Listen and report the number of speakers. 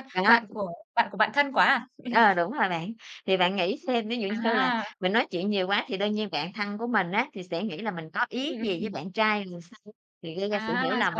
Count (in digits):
2